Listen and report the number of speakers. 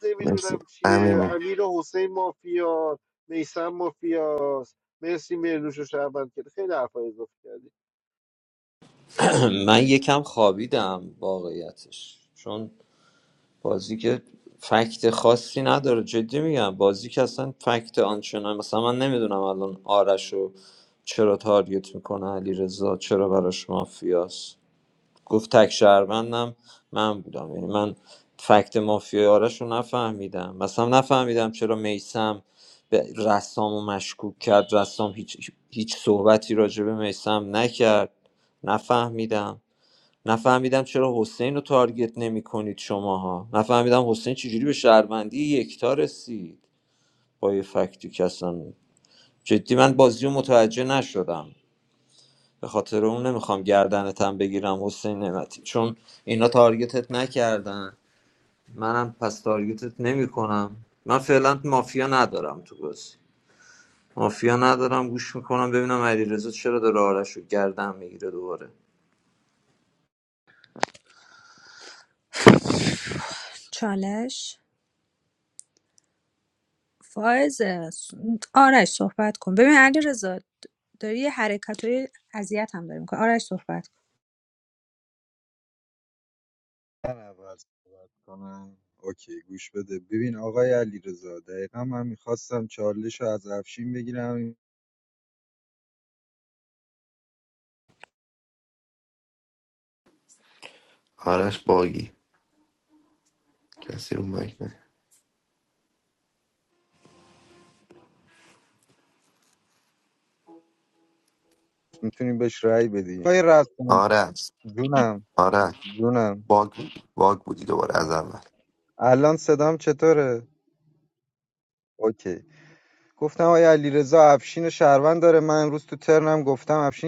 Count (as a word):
five